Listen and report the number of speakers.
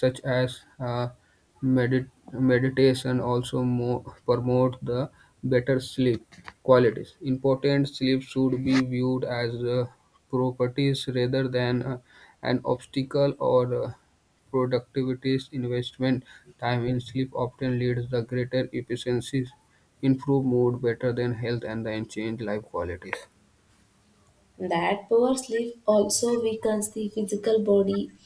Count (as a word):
two